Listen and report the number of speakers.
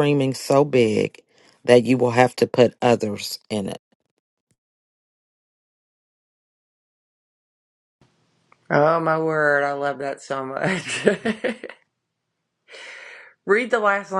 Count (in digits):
2